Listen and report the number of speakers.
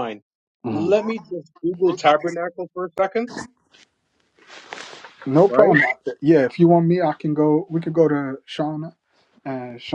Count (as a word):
two